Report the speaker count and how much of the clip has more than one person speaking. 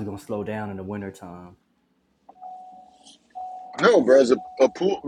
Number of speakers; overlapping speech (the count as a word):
two, no overlap